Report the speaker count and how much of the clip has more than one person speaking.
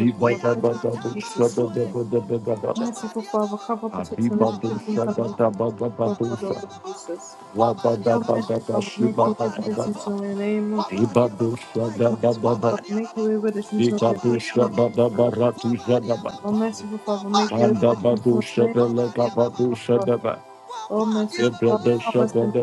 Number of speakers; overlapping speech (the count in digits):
2, about 18%